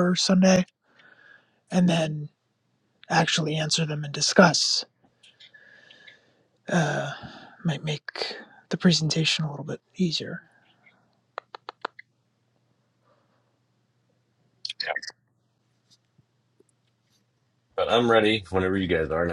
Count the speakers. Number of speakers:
two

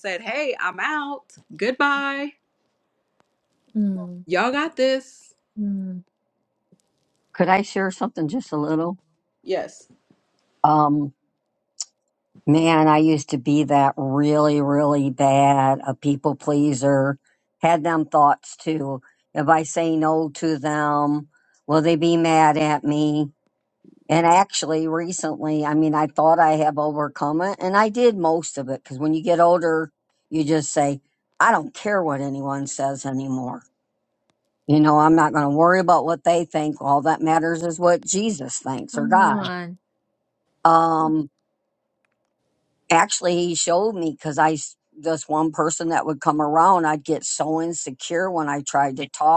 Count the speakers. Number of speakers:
three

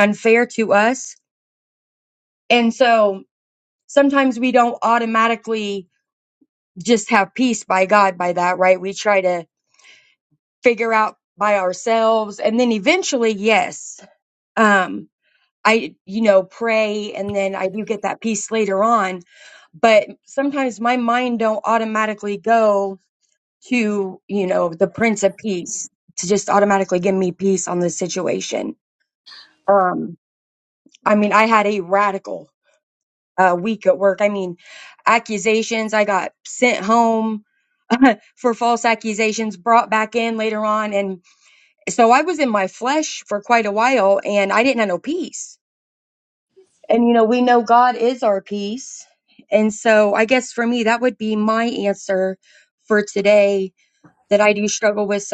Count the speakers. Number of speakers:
one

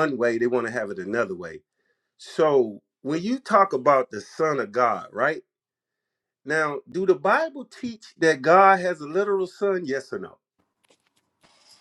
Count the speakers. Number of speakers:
one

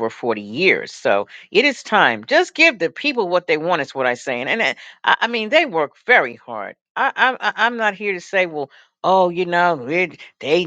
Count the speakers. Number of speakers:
one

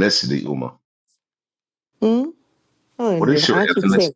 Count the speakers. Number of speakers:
two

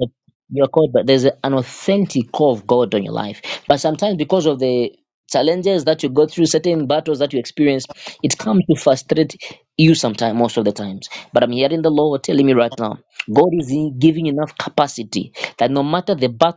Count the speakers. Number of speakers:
one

